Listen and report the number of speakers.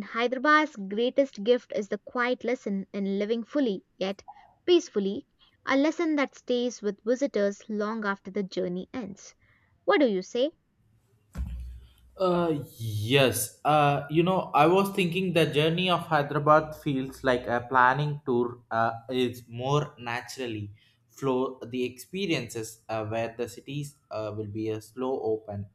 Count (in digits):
2